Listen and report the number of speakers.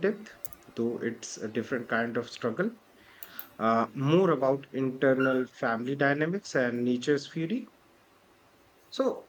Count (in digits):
1